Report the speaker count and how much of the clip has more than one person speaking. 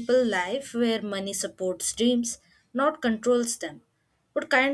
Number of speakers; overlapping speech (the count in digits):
1, no overlap